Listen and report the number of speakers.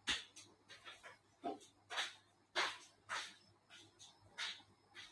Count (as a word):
zero